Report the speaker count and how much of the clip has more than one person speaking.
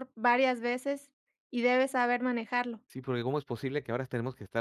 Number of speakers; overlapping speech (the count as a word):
two, no overlap